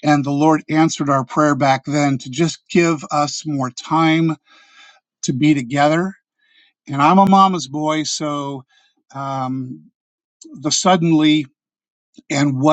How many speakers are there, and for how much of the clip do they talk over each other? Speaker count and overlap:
1, no overlap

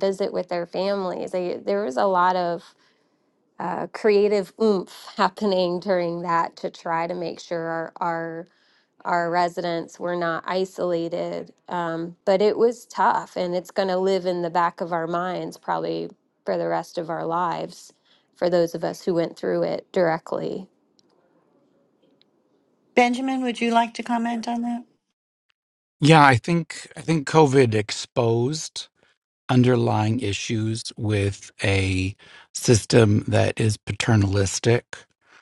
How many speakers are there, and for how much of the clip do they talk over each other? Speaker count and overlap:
3, no overlap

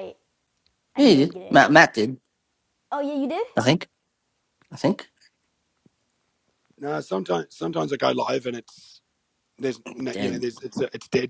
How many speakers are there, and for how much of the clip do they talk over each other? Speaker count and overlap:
3, about 12%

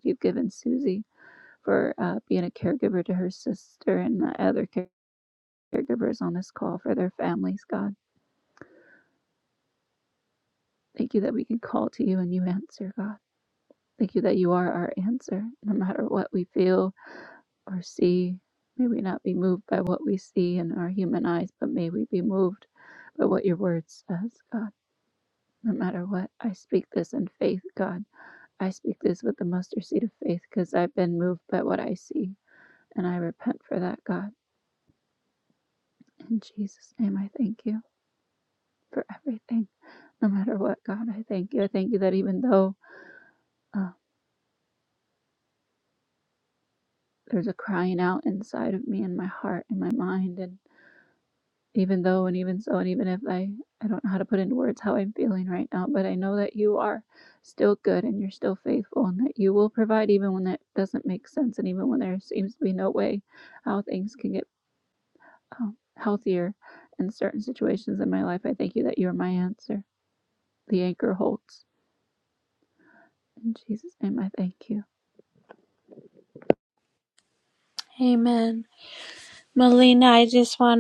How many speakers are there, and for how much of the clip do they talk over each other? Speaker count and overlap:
2, no overlap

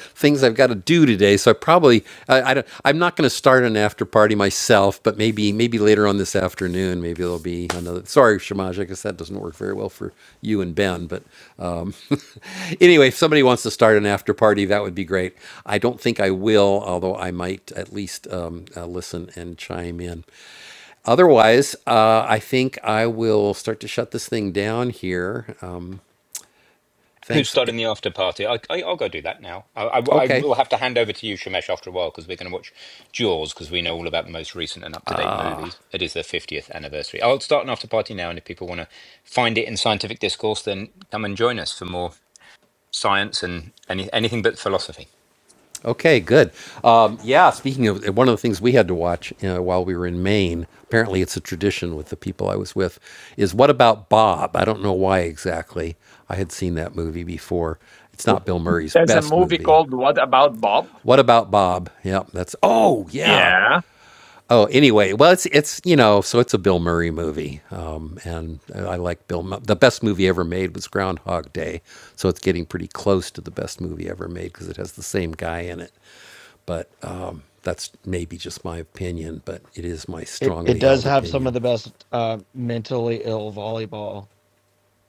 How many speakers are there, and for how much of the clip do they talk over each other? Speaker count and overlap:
4, about 3%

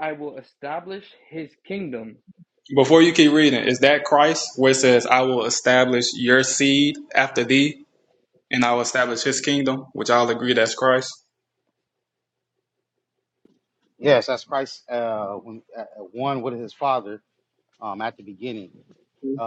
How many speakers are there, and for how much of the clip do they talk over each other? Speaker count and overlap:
3, no overlap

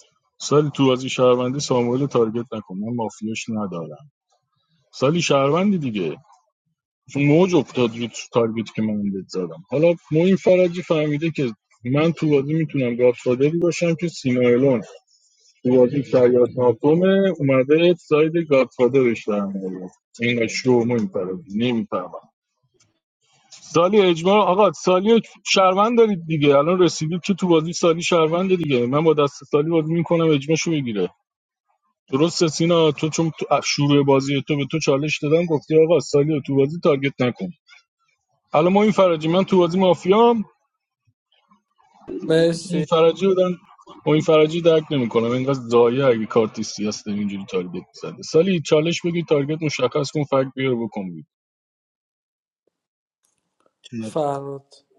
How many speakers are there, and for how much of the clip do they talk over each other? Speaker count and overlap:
2, under 1%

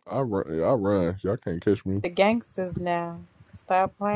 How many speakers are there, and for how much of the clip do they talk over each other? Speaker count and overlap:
2, no overlap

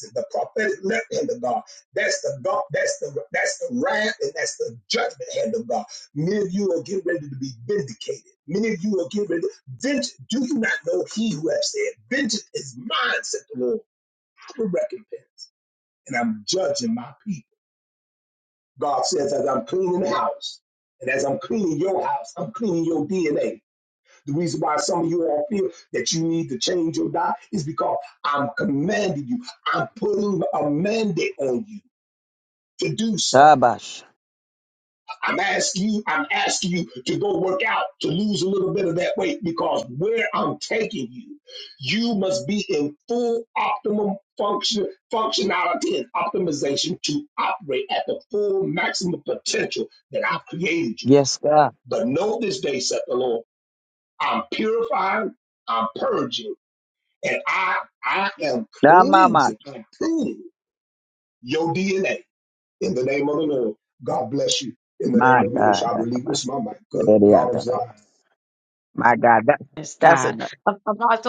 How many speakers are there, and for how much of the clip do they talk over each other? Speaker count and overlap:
3, about 5%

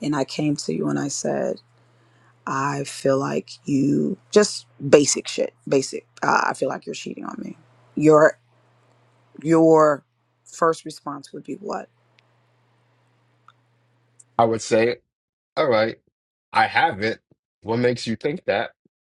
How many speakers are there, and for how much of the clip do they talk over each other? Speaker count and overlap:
2, no overlap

